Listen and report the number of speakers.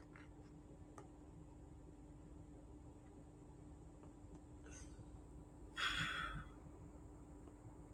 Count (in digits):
0